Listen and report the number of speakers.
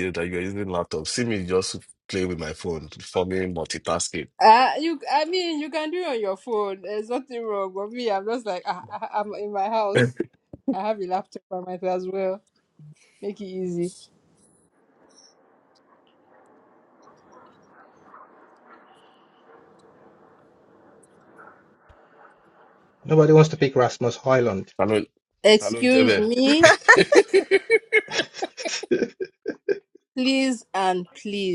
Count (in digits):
3